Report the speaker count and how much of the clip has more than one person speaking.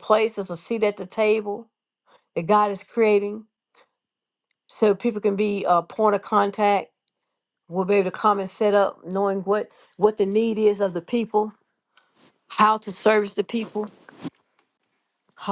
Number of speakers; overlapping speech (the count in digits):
1, no overlap